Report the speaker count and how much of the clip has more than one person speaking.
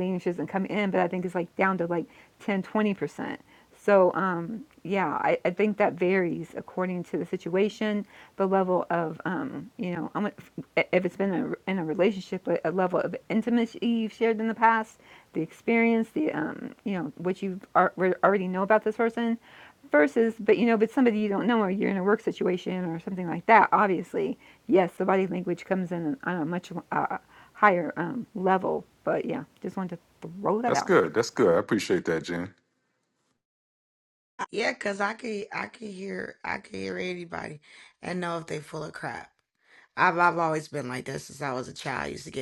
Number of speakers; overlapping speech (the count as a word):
three, about 1%